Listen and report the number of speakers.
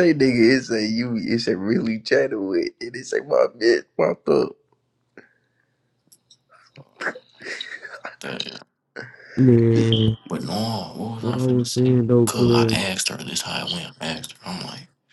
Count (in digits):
3